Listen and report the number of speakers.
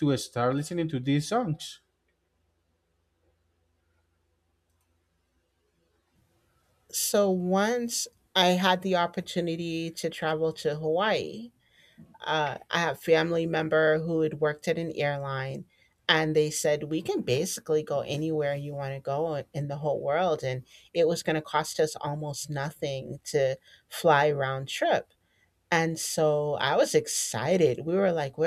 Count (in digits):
2